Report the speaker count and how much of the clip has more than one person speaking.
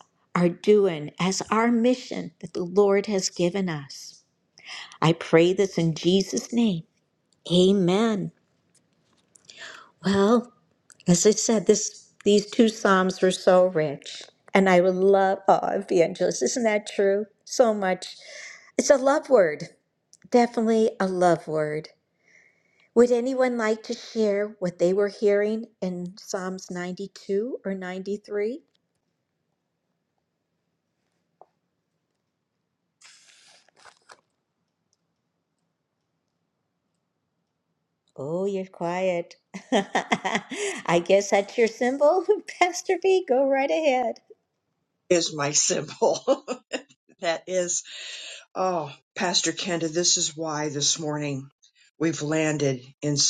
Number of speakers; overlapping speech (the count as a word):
two, no overlap